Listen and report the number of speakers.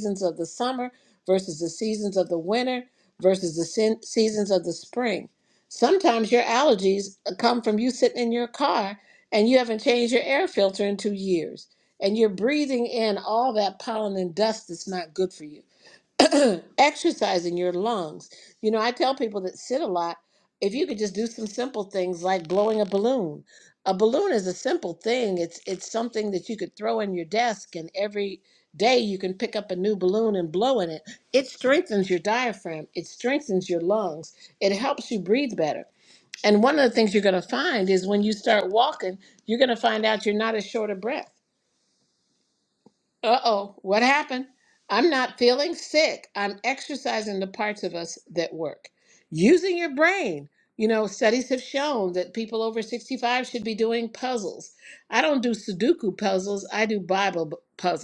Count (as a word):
one